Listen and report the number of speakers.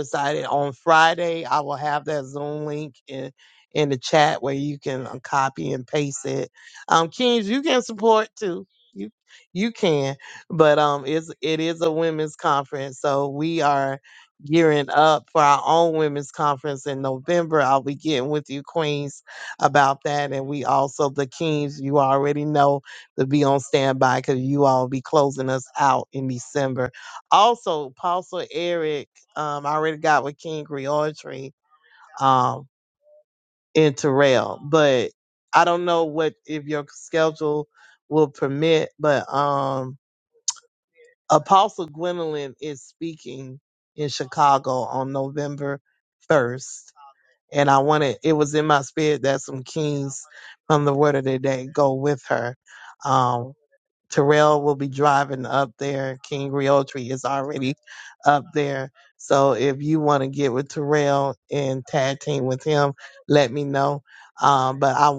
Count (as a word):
one